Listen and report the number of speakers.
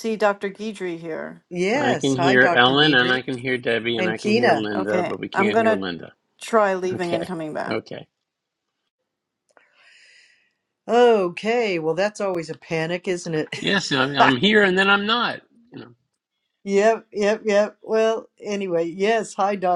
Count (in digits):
3